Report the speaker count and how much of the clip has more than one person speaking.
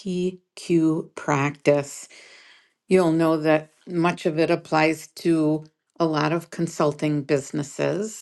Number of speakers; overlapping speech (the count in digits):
1, no overlap